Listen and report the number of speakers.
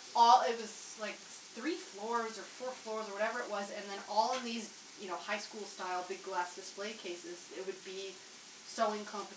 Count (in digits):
1